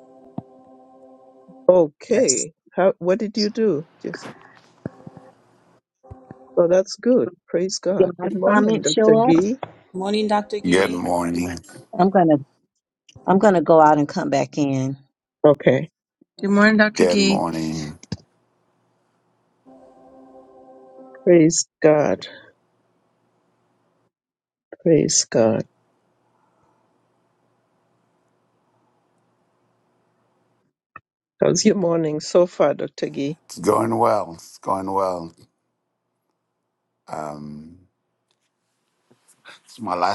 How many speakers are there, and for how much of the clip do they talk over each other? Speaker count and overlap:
5, about 6%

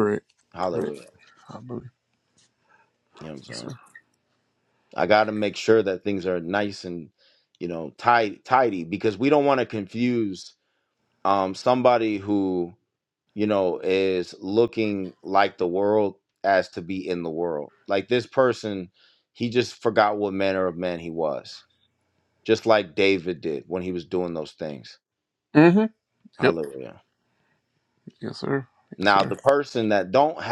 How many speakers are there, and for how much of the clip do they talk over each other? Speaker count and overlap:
2, about 3%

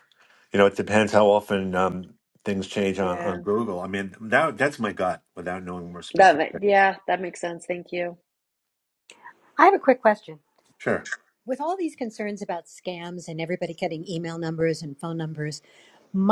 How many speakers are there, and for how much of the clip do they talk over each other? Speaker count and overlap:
3, about 4%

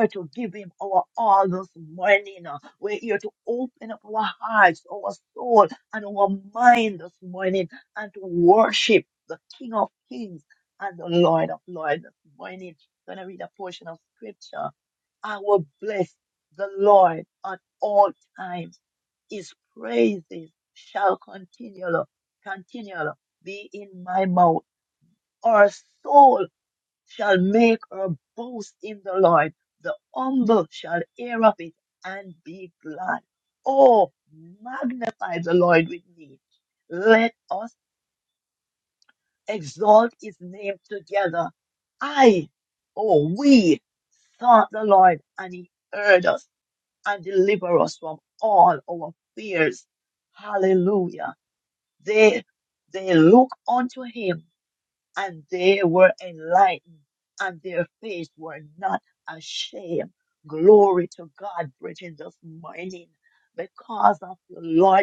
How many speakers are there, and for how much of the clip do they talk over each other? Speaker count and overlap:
1, no overlap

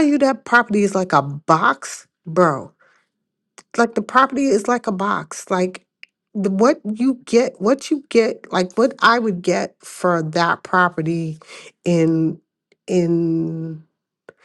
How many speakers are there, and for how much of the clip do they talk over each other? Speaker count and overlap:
1, no overlap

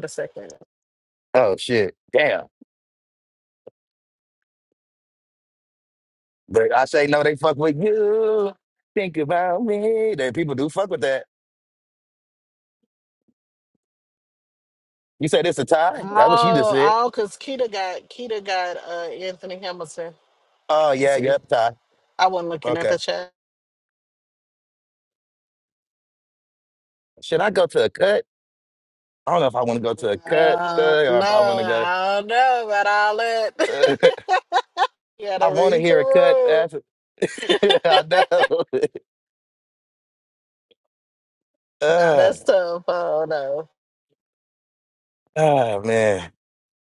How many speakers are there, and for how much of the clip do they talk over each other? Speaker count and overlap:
2, about 10%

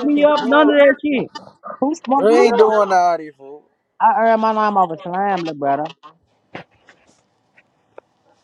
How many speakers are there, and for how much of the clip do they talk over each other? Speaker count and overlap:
3, about 15%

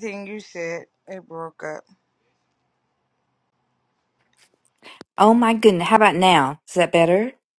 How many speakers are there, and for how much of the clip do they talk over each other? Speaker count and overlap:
2, no overlap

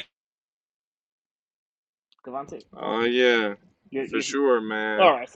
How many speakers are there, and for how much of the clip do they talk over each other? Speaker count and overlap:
2, about 5%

